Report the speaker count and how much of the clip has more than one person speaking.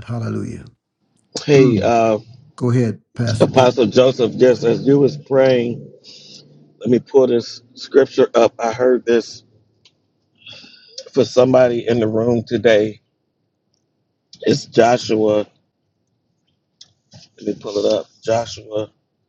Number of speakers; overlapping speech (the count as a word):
two, about 4%